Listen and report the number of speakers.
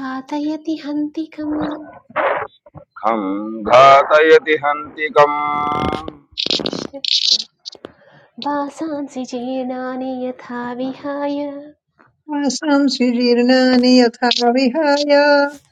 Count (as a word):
three